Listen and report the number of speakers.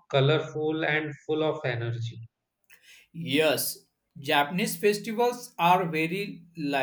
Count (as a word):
two